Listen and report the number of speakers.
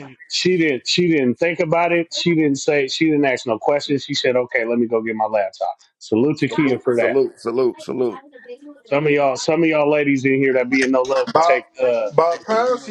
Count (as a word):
three